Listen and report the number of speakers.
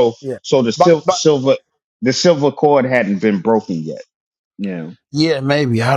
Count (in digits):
2